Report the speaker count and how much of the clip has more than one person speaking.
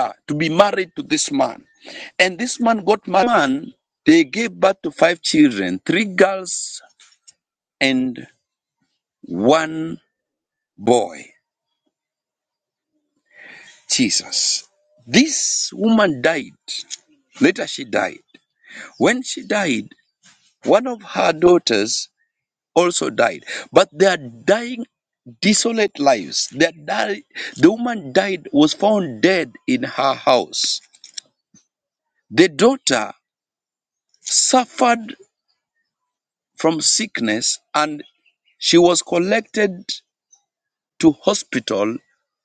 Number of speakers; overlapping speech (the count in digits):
1, no overlap